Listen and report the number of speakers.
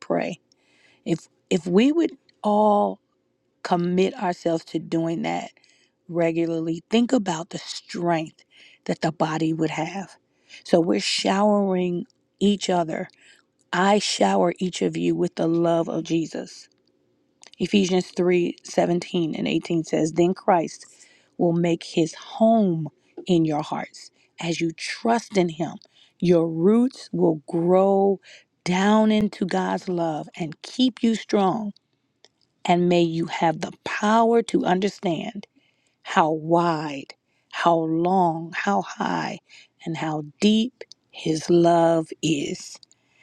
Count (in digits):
1